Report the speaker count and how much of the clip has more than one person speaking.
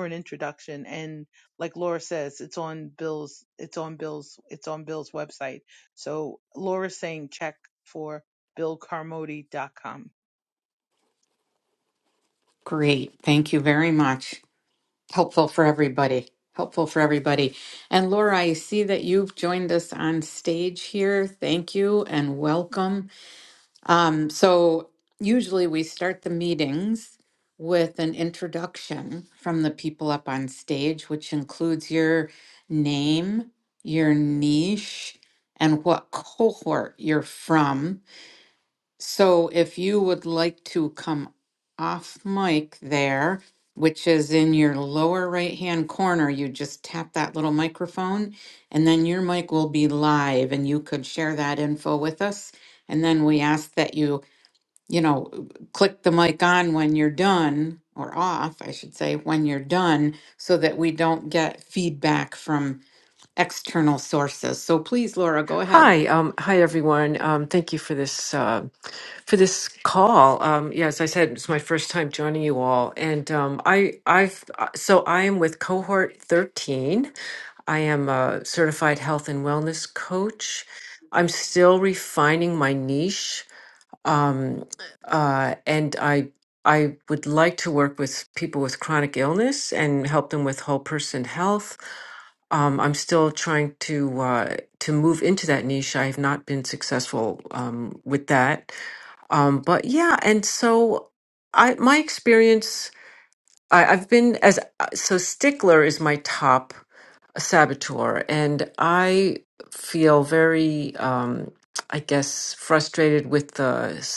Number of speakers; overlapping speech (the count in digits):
3, under 1%